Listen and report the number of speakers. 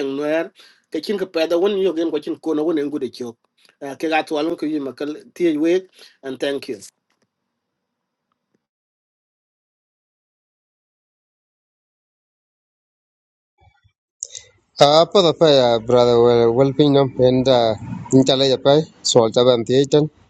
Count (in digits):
2